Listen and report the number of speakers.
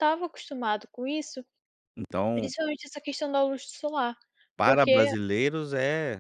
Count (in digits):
2